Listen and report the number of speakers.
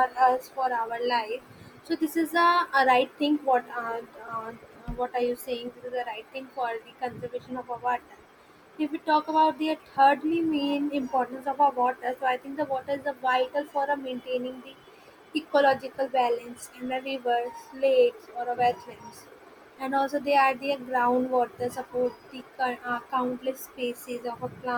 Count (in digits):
1